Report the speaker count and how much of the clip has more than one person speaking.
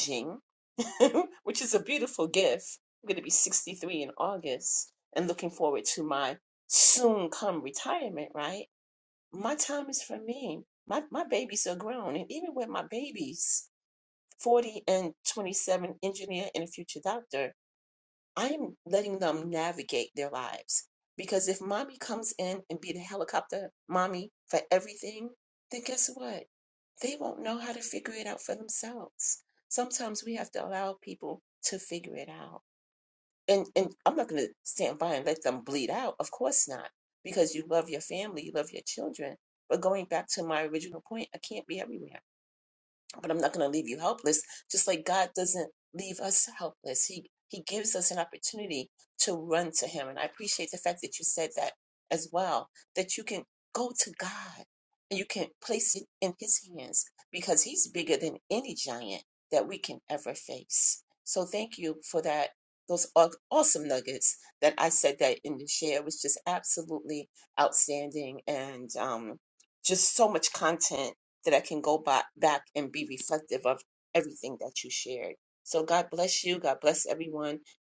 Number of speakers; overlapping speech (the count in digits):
1, no overlap